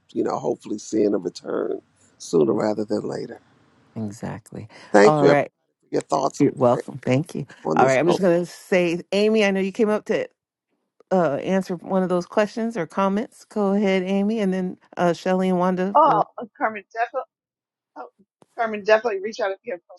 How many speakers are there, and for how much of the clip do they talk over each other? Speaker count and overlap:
3, about 8%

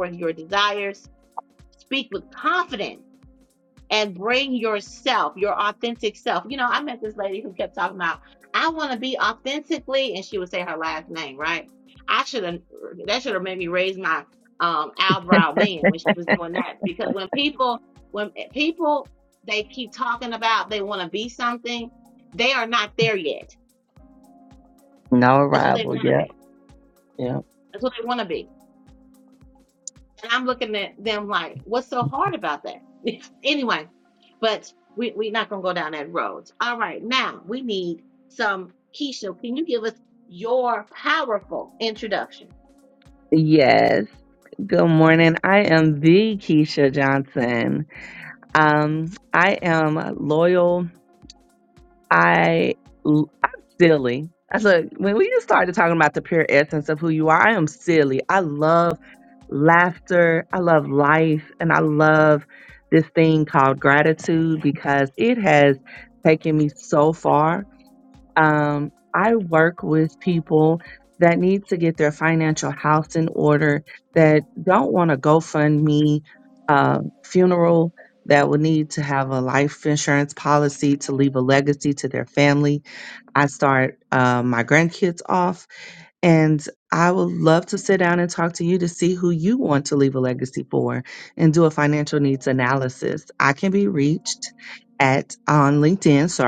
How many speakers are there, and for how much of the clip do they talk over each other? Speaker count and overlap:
2, about 1%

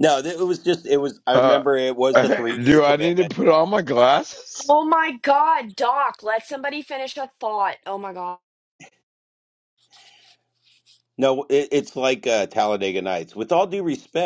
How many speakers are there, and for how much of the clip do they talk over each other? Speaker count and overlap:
3, about 8%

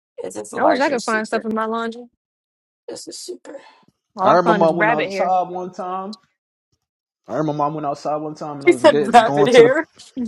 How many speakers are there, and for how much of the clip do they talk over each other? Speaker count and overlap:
3, about 30%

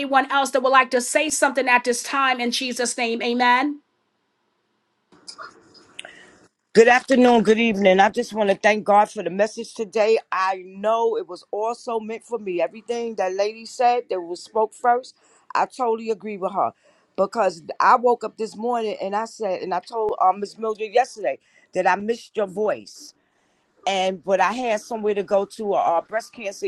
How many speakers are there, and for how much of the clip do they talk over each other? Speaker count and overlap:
2, no overlap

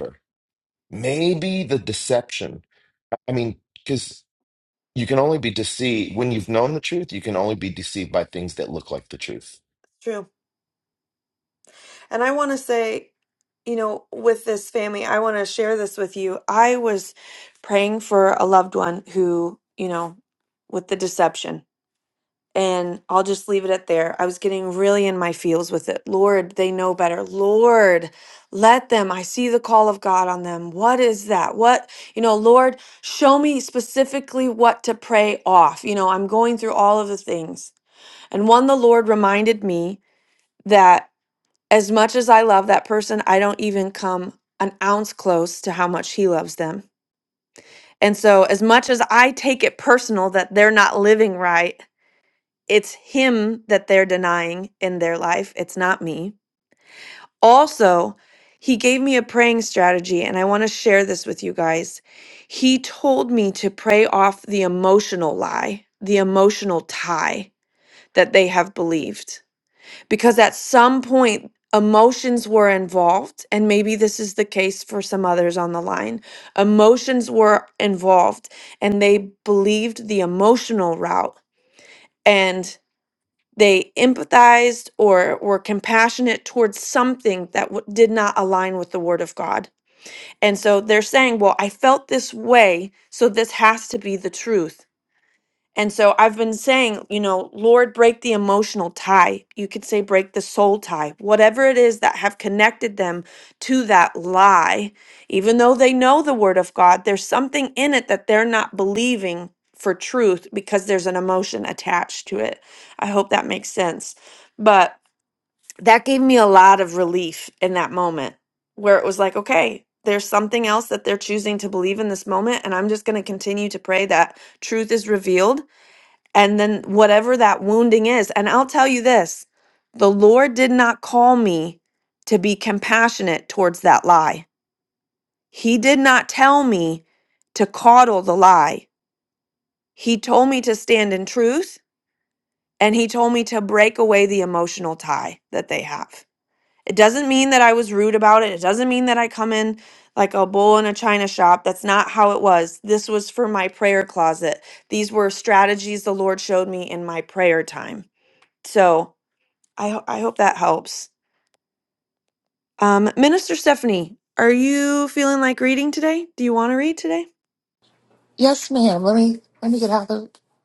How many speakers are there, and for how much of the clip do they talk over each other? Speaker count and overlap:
3, no overlap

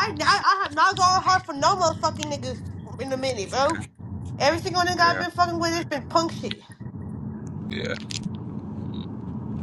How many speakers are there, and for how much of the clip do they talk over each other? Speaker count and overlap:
2, about 6%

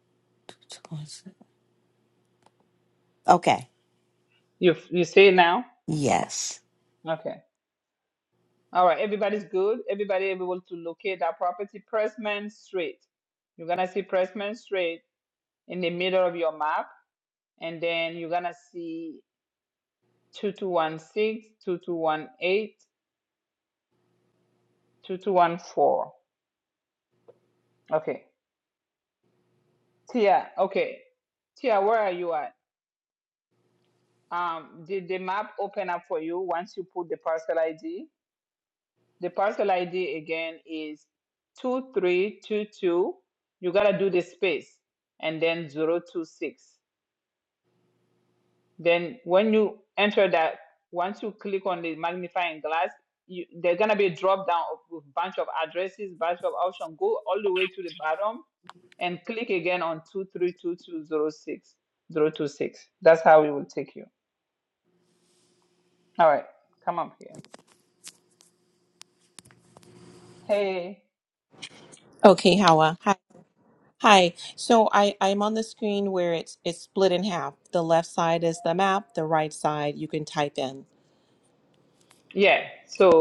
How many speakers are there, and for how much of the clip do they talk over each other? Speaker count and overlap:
3, no overlap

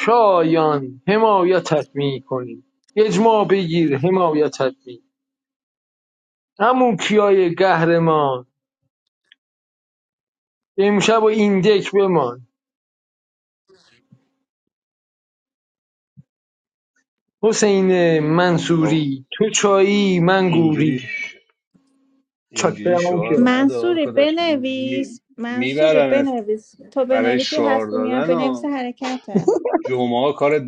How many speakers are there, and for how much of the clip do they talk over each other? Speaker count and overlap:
3, about 16%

